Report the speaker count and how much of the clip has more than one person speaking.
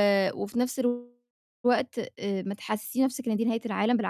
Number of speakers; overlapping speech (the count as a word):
one, no overlap